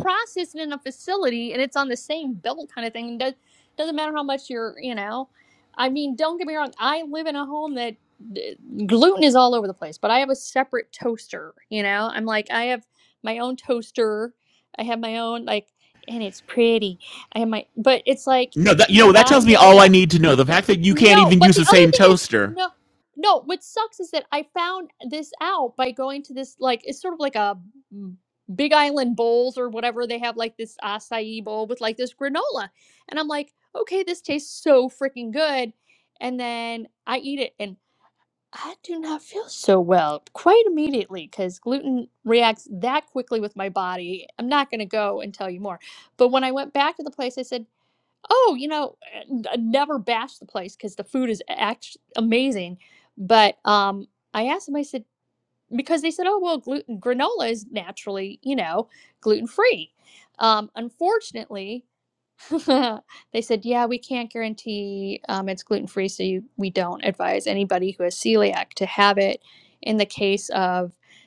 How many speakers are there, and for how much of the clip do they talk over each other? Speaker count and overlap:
two, about 3%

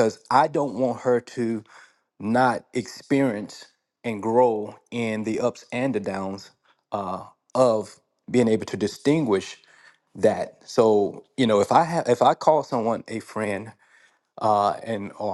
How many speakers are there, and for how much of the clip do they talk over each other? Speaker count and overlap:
one, no overlap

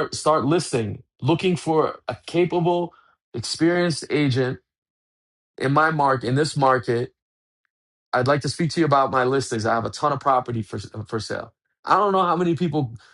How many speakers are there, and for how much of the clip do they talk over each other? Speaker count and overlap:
one, no overlap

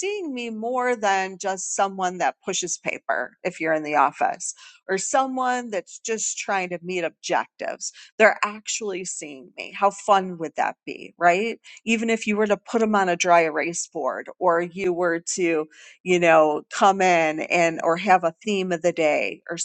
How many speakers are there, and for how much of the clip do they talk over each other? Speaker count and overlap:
one, no overlap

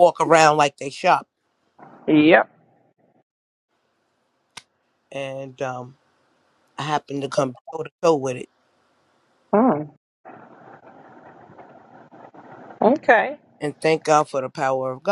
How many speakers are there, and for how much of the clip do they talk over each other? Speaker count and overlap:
two, no overlap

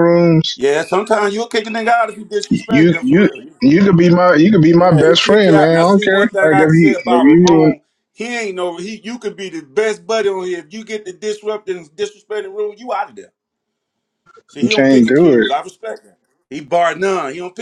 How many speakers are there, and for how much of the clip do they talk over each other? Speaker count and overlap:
two, about 27%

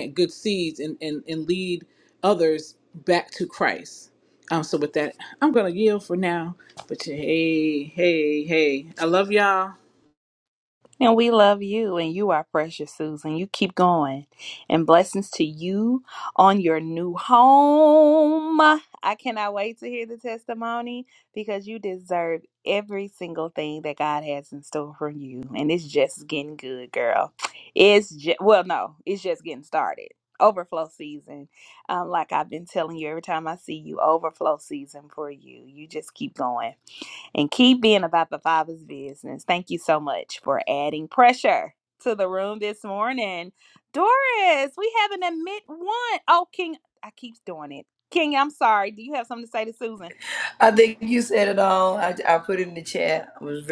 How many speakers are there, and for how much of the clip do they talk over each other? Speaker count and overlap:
three, no overlap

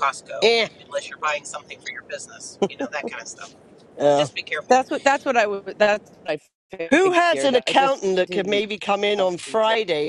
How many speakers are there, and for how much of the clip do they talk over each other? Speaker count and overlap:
three, about 26%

